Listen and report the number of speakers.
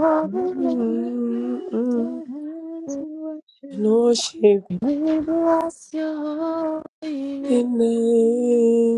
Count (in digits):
3